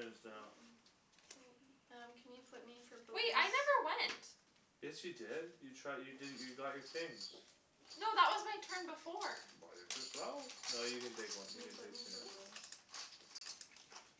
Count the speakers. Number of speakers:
3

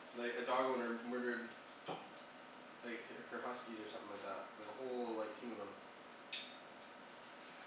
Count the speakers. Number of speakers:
1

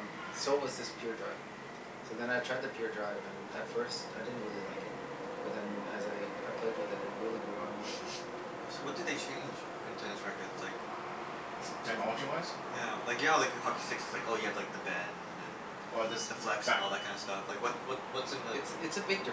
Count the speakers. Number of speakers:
3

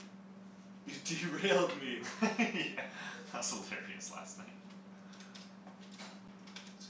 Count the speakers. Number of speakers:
2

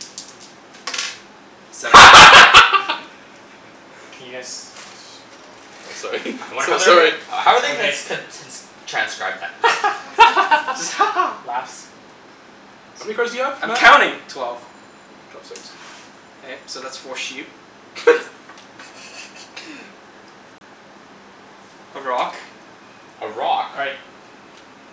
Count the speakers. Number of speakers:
4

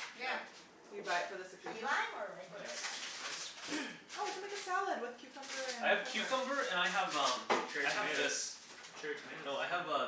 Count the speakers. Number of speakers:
4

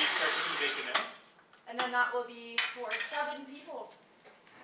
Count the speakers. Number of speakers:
2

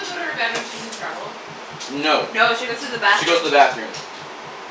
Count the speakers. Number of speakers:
3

